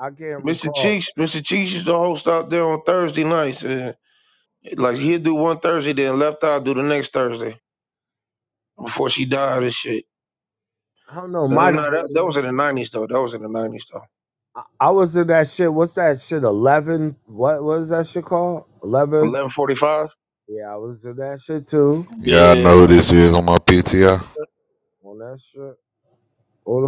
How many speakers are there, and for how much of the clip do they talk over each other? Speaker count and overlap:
three, about 8%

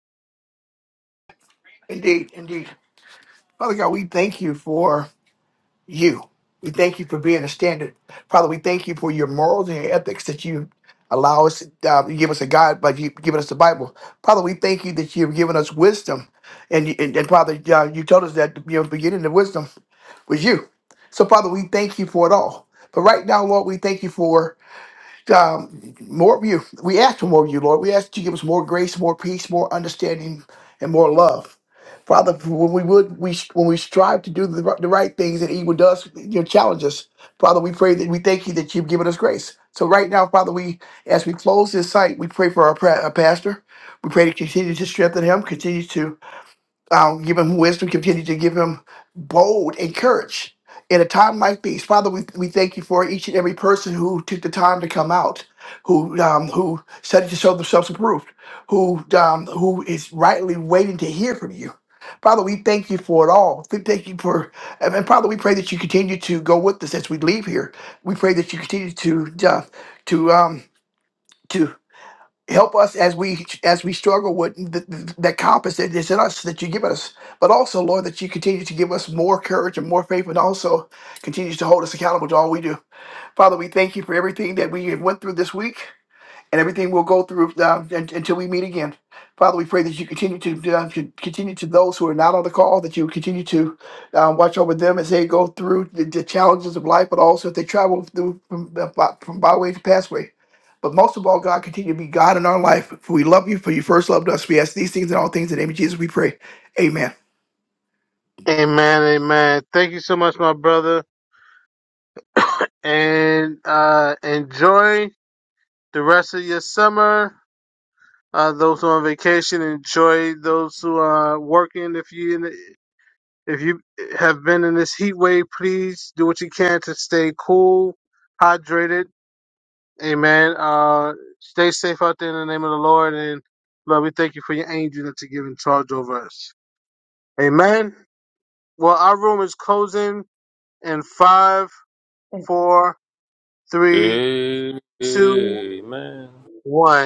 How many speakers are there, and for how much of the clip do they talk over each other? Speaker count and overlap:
three, about 1%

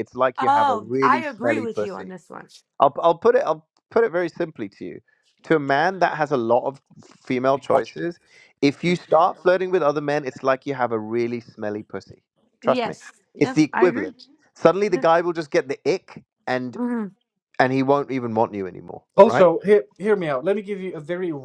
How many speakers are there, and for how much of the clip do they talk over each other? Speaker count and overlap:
three, about 15%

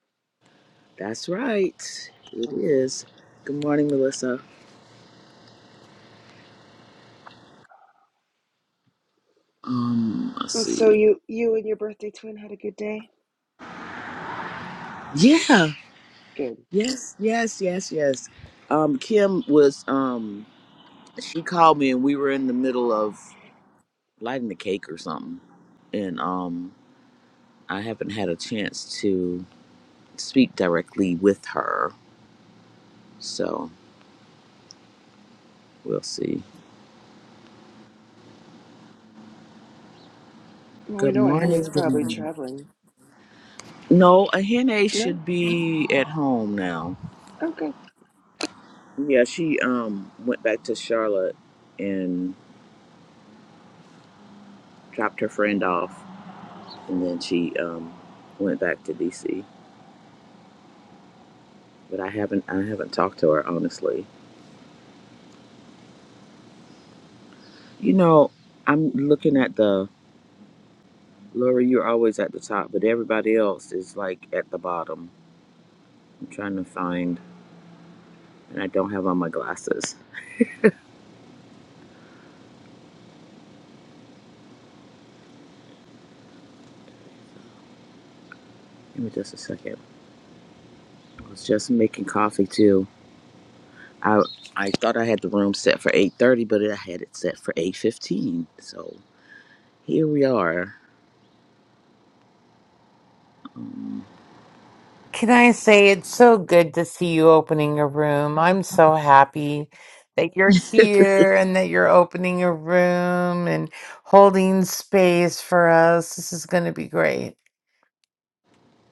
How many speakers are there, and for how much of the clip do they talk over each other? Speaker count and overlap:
three, about 2%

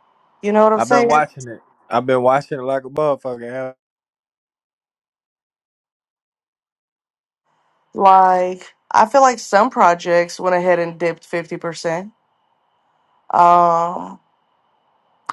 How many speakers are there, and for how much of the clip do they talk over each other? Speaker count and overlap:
two, about 3%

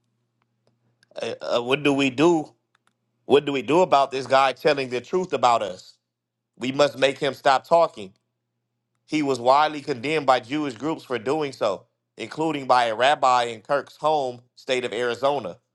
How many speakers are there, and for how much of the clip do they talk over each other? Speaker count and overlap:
one, no overlap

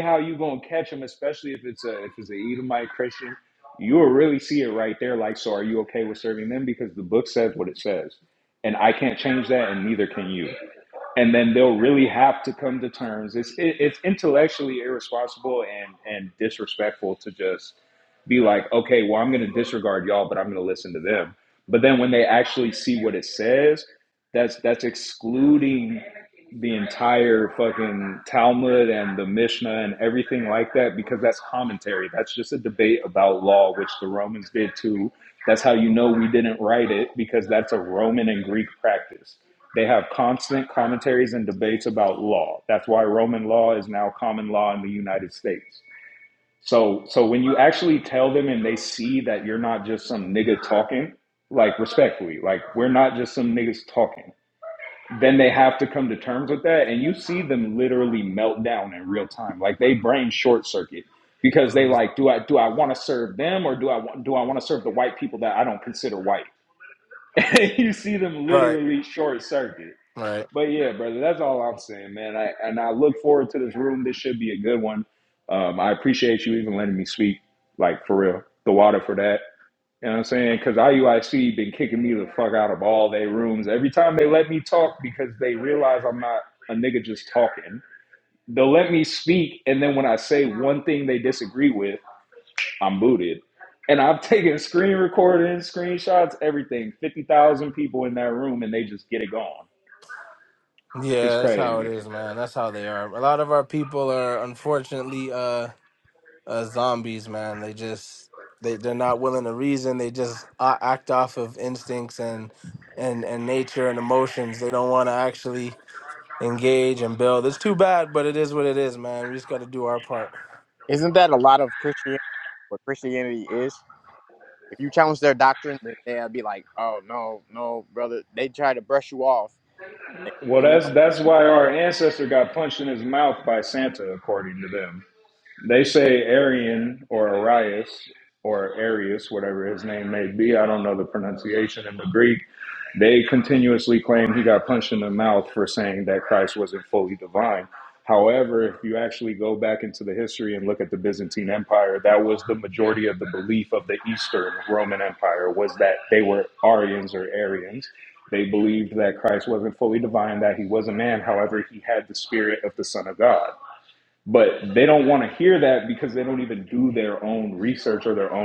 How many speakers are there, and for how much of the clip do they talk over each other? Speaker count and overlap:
three, about 1%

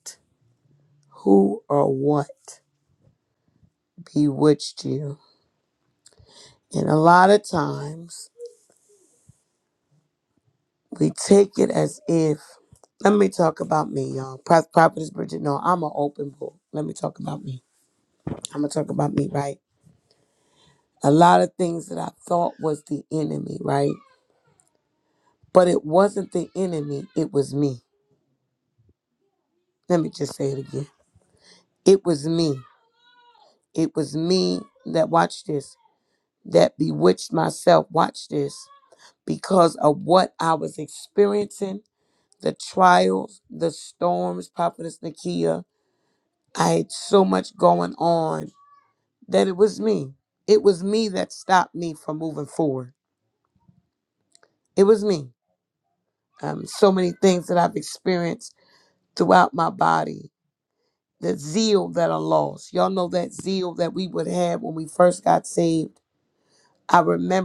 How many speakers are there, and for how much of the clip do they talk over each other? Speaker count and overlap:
one, no overlap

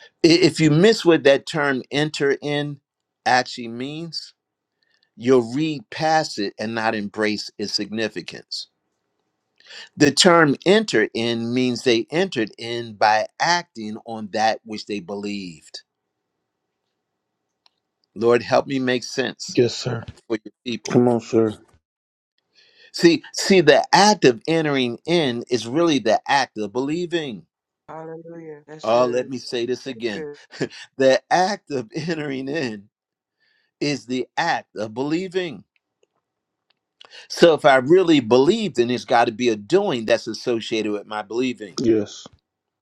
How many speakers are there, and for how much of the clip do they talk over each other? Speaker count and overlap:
three, about 2%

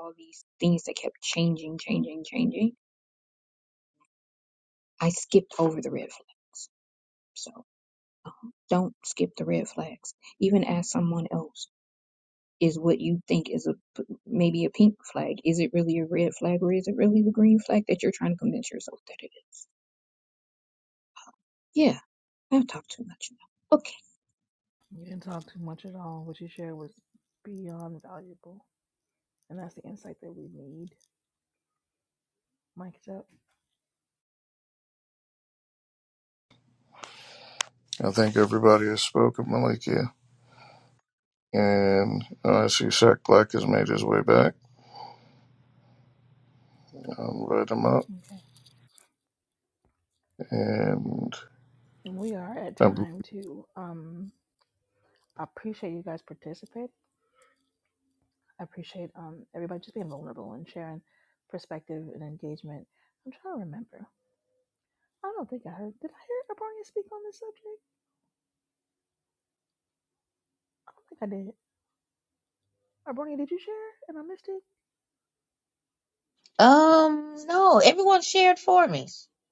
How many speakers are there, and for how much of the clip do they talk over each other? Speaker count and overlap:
four, under 1%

